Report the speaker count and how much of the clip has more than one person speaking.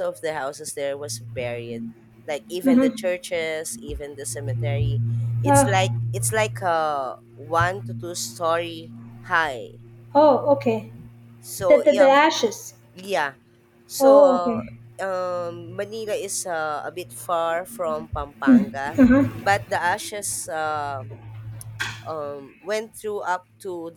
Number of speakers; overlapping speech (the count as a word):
two, about 9%